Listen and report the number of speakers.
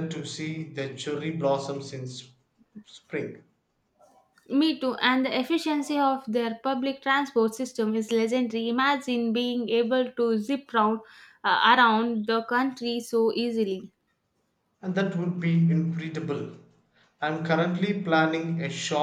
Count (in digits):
2